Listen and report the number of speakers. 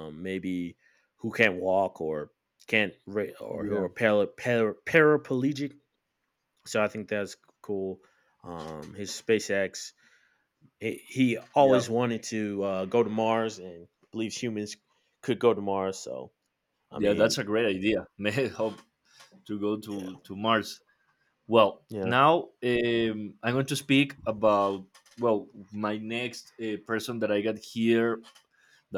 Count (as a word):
two